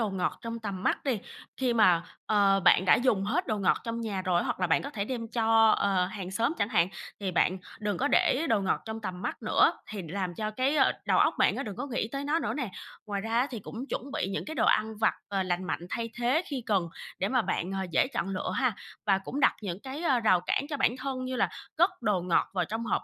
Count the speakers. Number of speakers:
1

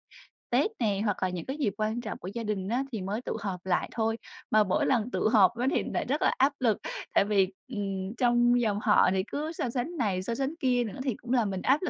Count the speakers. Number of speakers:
1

